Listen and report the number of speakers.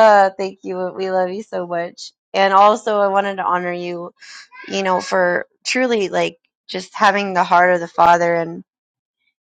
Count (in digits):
1